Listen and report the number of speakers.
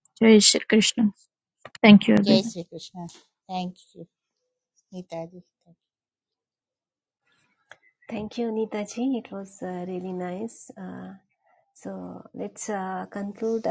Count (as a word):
three